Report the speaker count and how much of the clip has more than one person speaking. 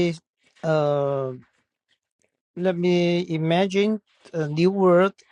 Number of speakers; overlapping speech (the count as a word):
one, no overlap